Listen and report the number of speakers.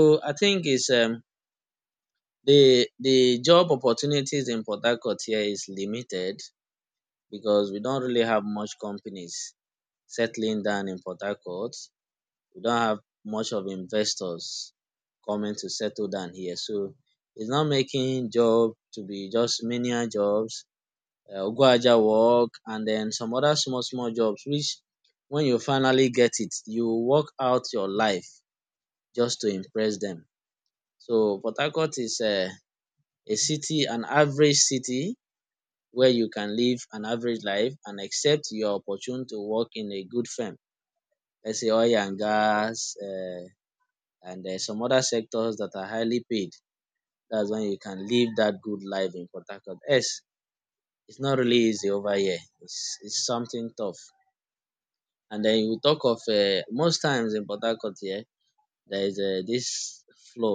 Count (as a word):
one